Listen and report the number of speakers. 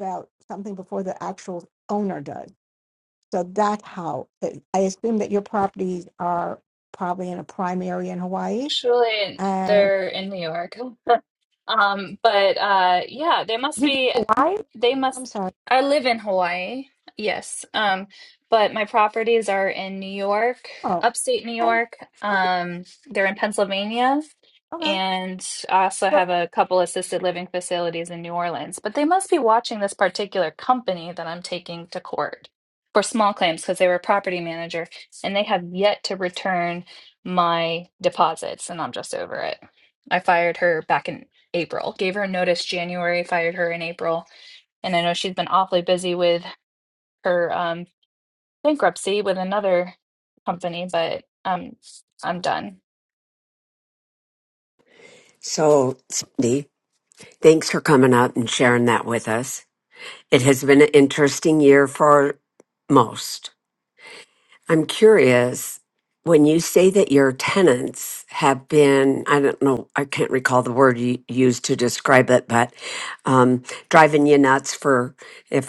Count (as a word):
three